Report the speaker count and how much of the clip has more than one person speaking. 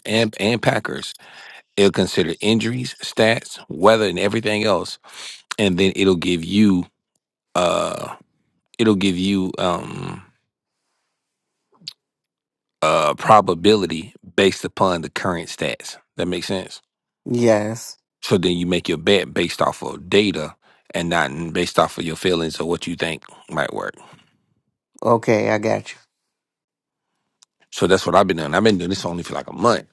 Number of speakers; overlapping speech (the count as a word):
two, no overlap